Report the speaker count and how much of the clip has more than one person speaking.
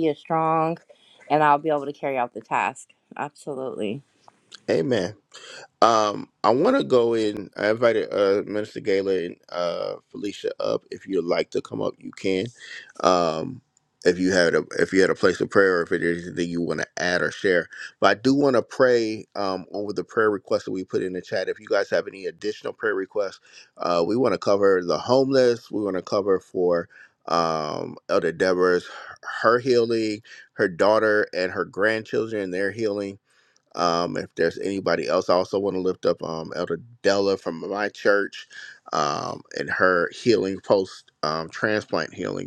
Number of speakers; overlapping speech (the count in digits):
2, no overlap